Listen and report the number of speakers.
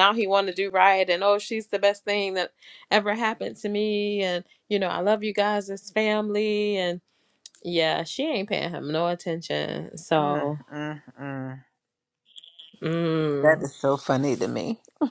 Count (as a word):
two